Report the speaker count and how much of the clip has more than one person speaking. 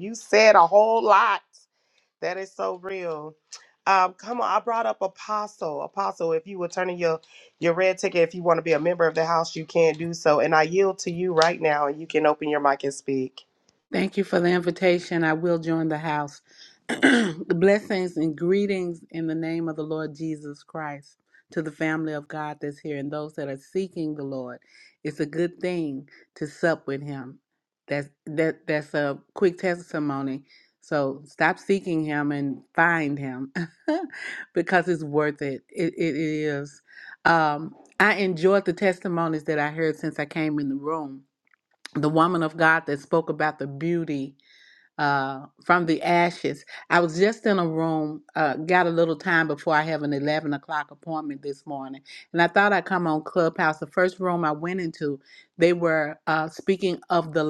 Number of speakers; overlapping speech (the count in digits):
2, no overlap